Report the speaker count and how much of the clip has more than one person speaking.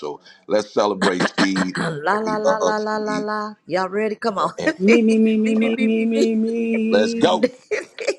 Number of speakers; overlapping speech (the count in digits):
3, about 32%